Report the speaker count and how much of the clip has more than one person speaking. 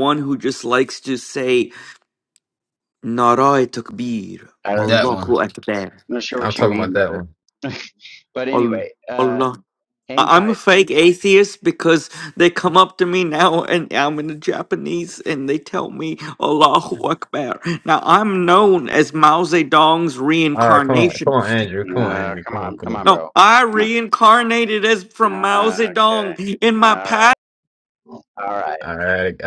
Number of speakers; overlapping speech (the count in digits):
3, about 21%